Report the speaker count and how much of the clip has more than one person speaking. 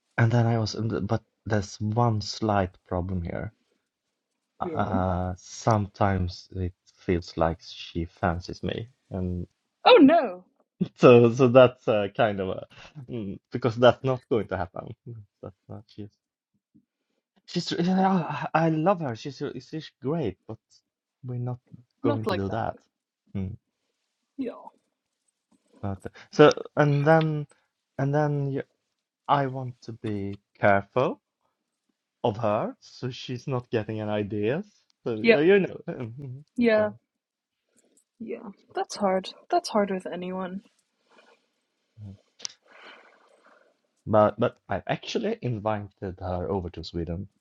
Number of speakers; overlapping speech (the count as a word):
two, about 3%